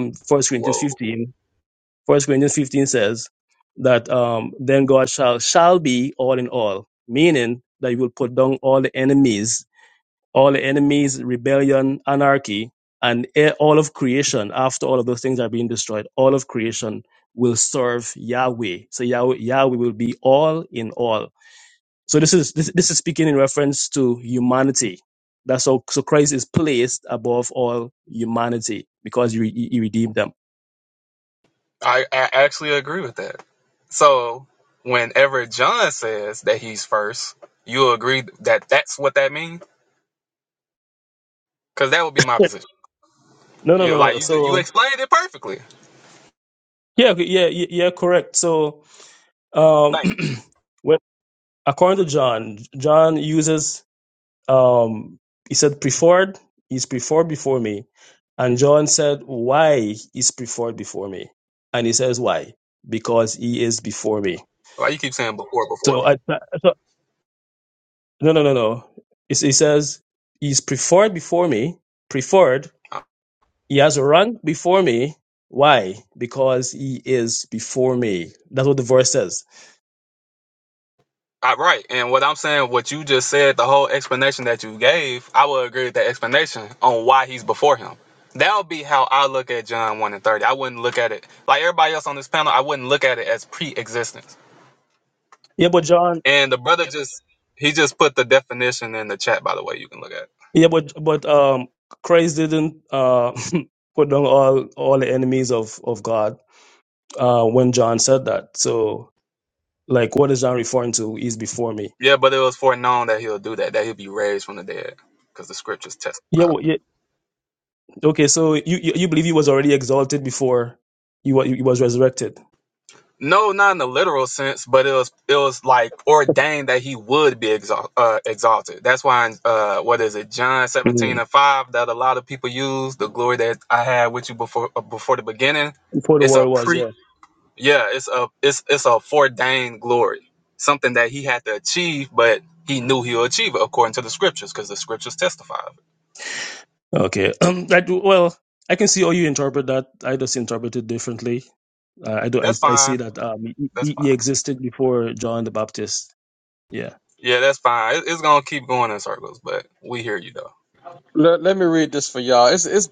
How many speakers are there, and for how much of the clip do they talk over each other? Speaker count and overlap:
3, about 2%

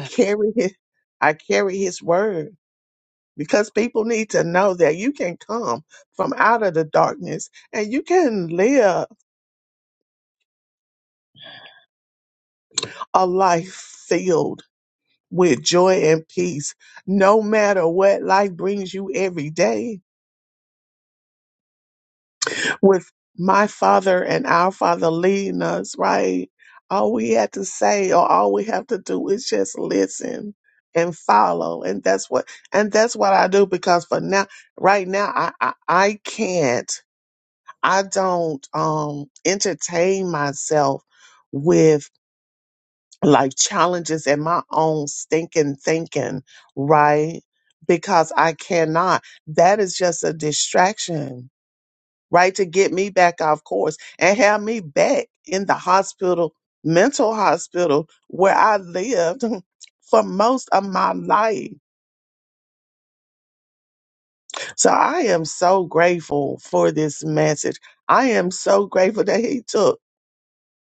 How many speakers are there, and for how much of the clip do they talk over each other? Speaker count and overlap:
1, no overlap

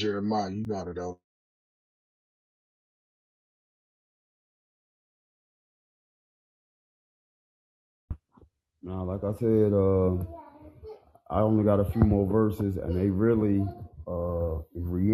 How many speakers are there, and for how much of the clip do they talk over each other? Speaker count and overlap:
2, no overlap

